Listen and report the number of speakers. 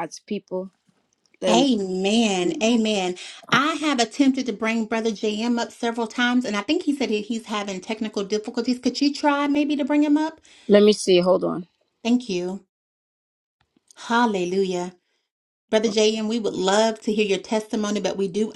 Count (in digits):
2